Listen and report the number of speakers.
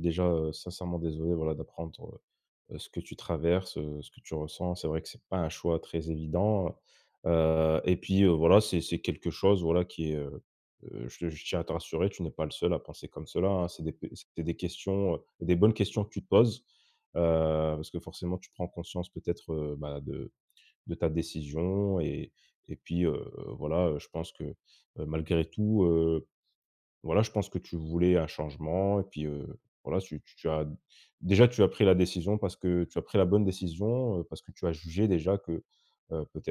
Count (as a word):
one